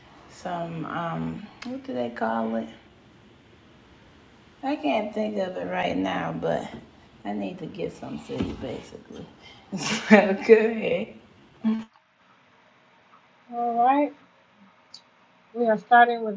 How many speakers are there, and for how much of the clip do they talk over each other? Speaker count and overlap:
two, no overlap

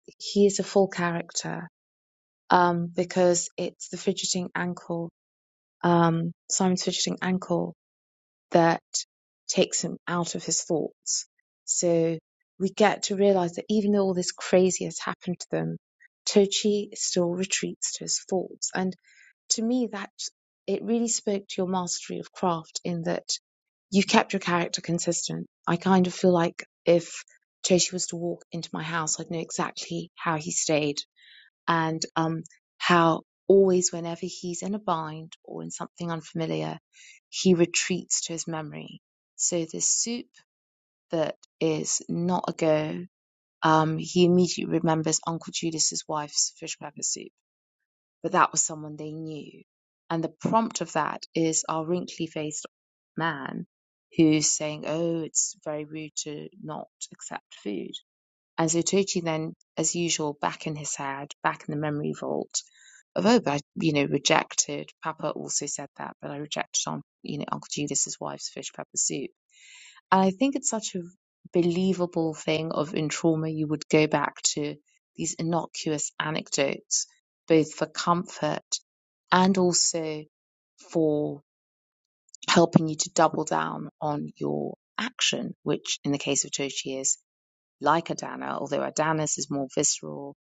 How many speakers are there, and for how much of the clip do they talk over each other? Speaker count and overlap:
one, no overlap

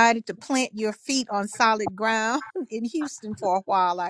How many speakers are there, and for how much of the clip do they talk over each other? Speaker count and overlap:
one, no overlap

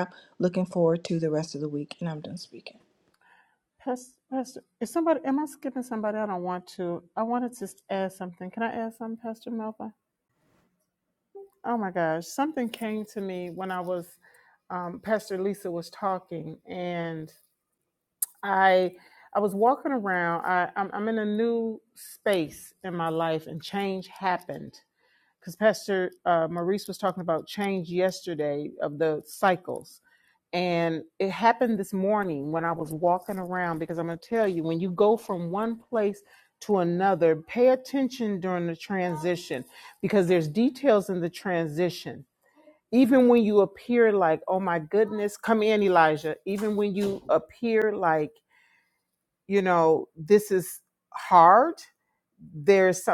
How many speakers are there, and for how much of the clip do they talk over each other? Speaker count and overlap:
two, no overlap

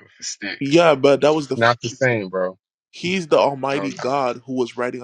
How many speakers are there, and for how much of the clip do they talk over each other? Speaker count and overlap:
two, about 8%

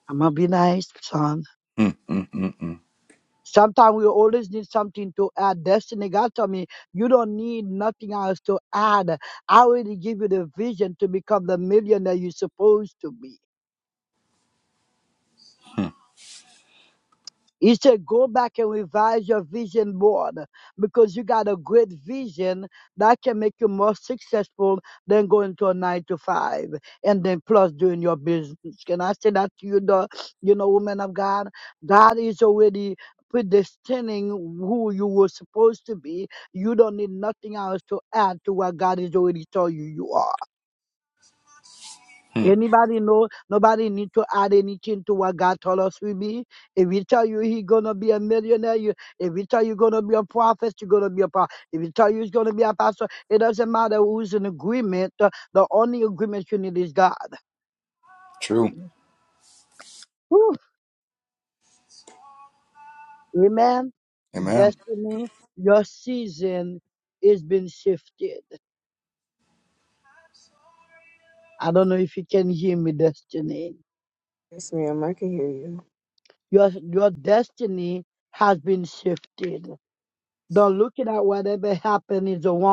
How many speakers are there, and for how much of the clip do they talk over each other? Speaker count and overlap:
three, under 1%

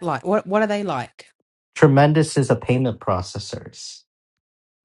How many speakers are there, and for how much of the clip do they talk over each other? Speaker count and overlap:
two, no overlap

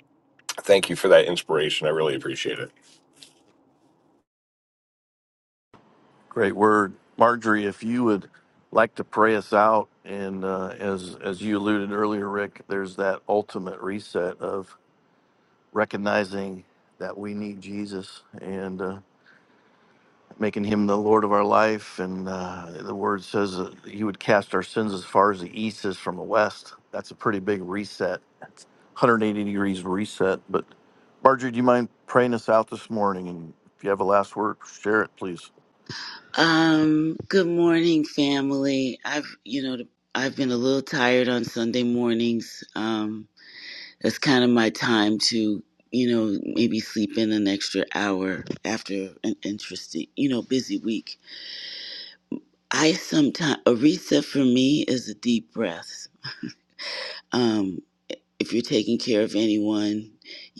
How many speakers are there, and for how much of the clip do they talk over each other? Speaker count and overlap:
three, no overlap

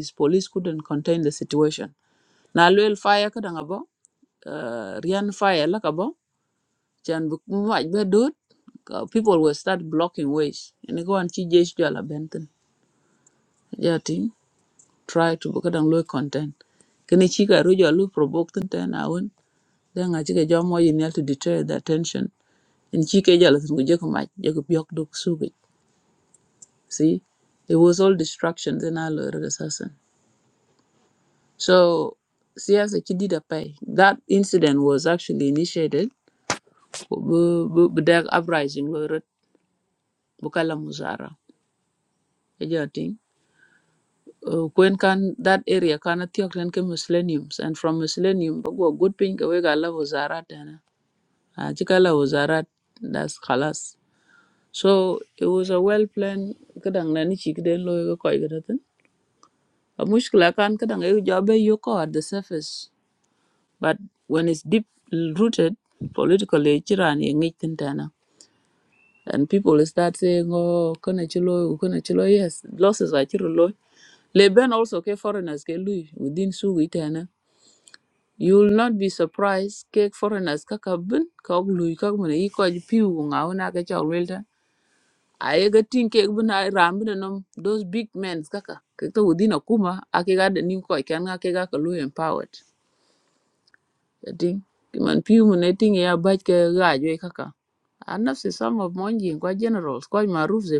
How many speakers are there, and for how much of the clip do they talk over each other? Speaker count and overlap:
one, no overlap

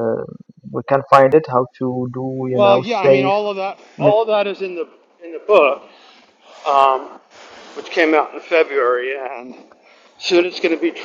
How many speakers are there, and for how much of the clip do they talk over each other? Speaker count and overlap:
two, about 9%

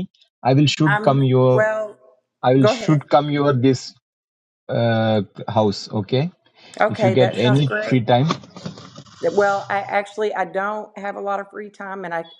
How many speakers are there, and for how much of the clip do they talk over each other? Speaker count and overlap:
two, about 19%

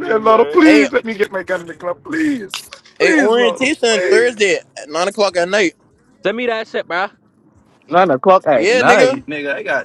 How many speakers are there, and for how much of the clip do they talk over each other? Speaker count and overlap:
three, about 30%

